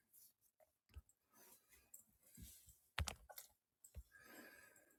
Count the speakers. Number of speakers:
0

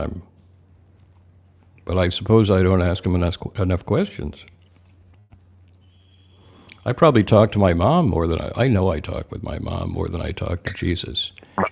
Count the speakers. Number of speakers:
1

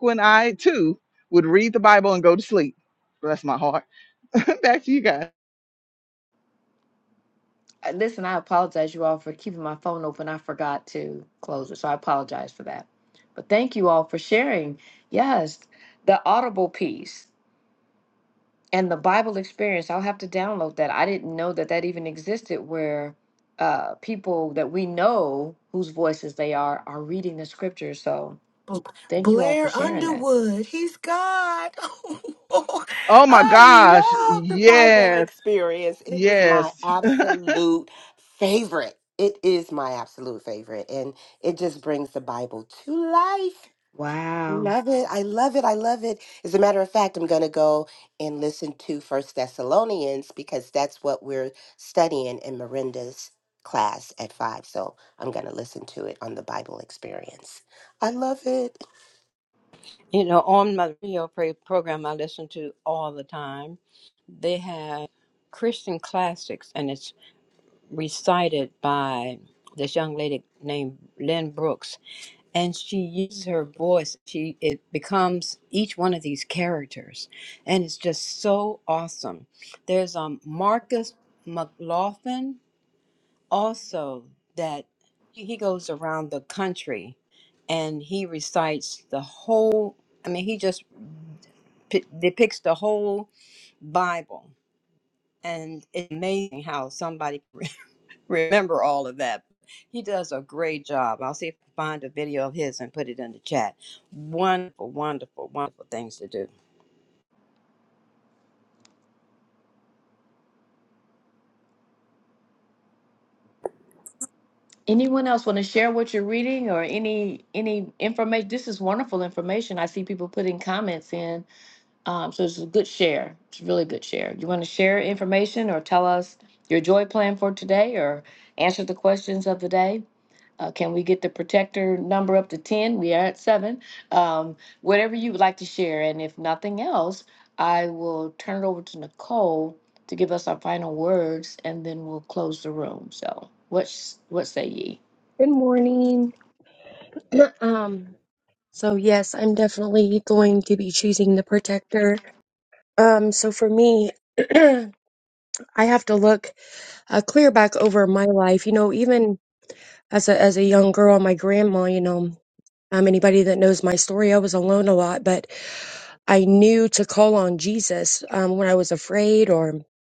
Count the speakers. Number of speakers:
5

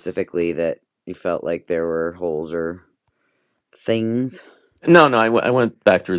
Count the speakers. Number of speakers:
2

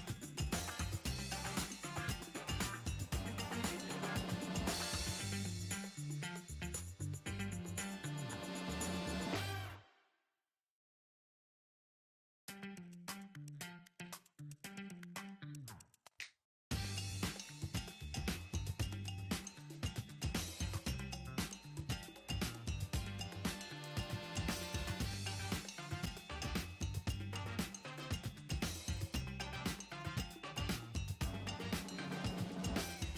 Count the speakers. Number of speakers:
0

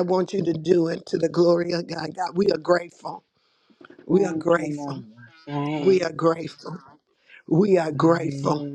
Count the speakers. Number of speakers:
2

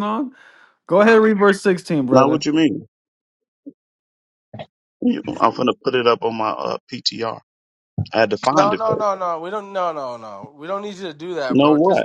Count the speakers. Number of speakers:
3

